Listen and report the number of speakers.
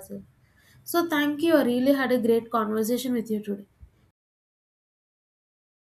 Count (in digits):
1